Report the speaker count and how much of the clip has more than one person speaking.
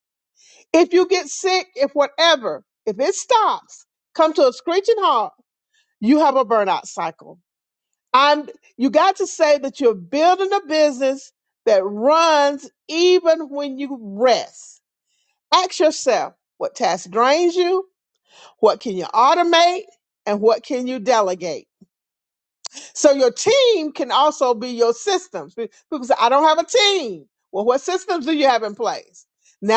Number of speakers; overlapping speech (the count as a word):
one, no overlap